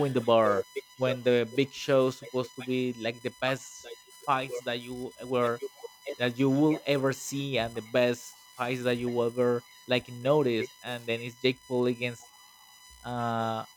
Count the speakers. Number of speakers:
1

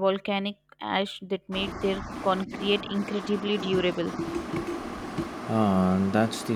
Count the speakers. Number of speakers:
2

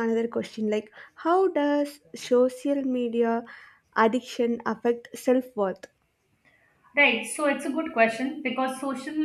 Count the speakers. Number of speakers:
2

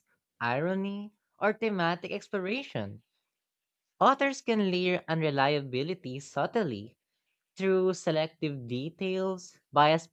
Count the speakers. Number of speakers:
1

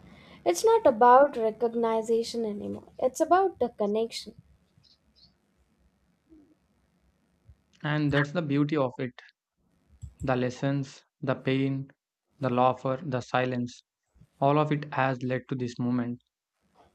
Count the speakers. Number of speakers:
2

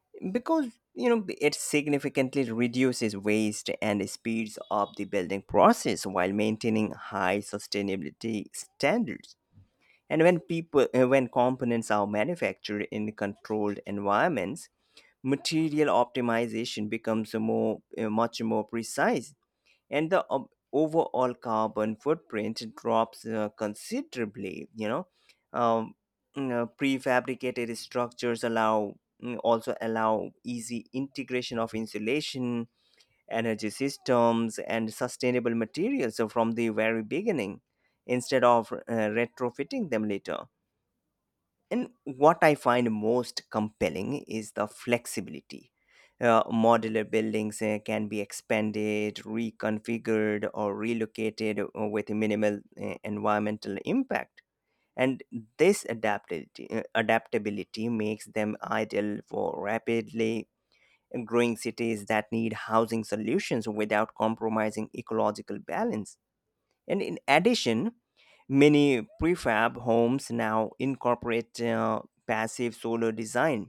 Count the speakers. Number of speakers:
1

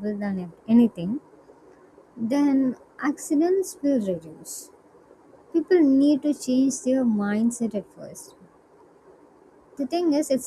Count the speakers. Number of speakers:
1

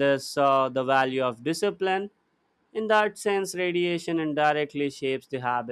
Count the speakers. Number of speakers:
1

